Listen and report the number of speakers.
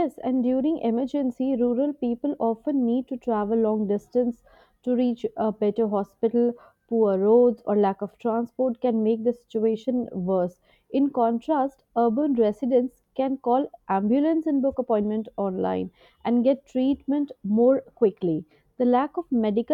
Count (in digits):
1